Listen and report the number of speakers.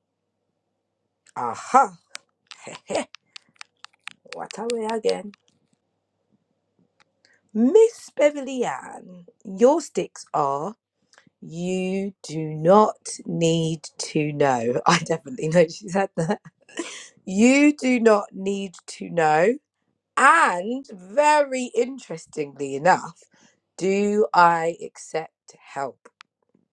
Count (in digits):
1